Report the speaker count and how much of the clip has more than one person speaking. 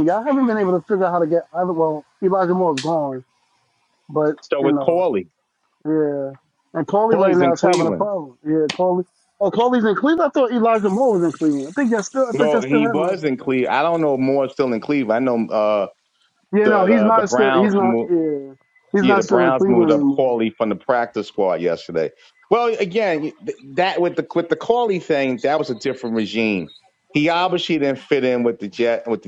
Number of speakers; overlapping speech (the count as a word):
two, about 17%